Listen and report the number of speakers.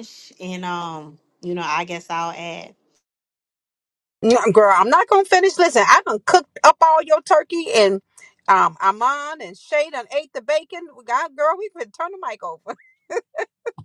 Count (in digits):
2